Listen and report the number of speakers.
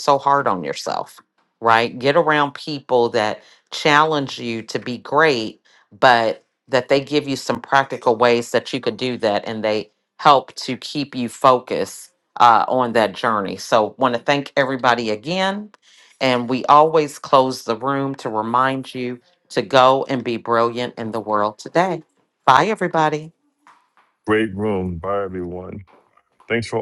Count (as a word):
two